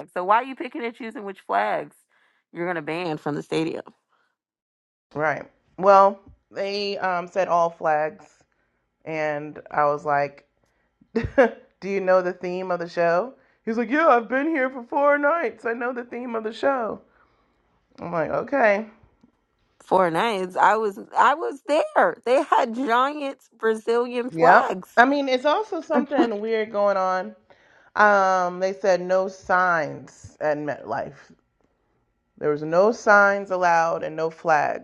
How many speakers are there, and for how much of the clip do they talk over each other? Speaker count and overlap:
2, about 1%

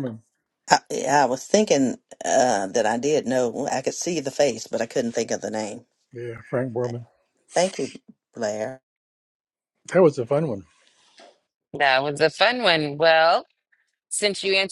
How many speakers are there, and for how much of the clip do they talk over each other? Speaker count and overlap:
3, no overlap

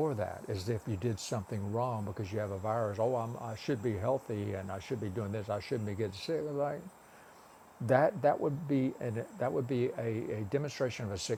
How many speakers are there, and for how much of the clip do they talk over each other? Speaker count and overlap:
1, no overlap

